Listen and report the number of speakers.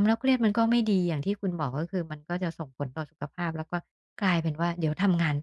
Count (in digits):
1